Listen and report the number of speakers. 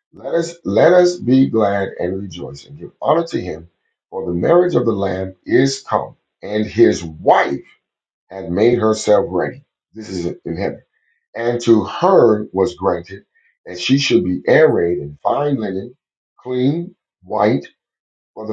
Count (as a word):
one